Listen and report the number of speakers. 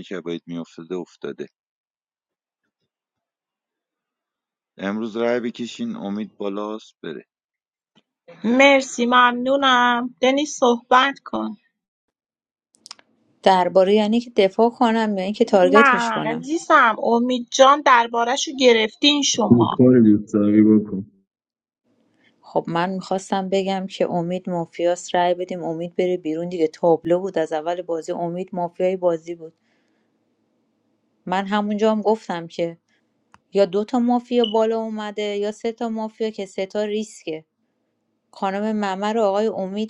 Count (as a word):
four